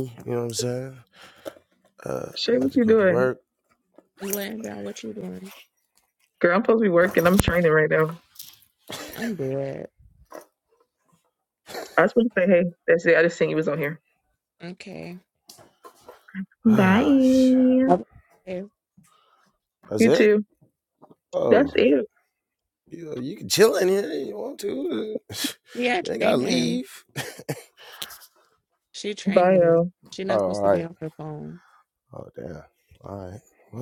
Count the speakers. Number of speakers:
three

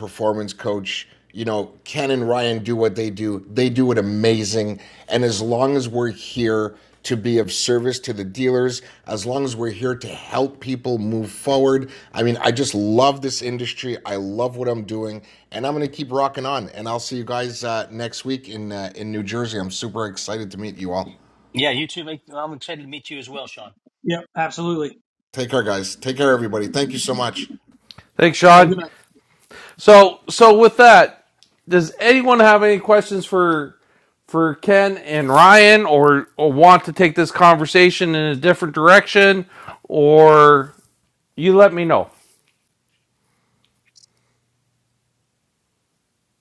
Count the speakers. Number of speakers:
four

